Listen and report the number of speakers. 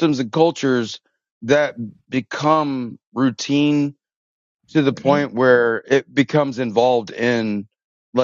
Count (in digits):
1